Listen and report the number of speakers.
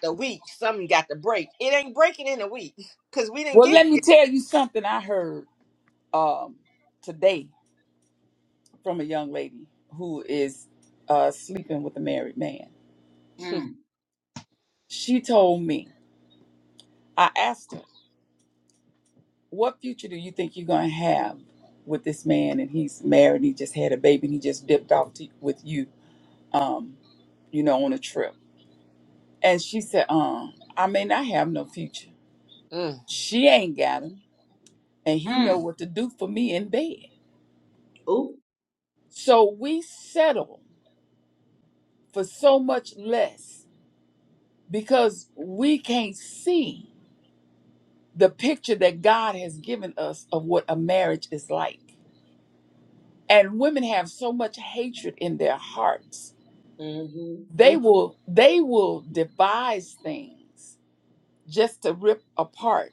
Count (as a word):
three